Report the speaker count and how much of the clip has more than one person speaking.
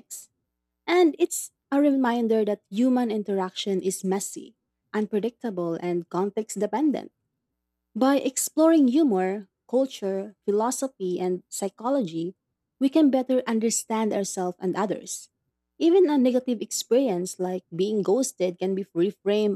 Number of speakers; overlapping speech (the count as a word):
one, no overlap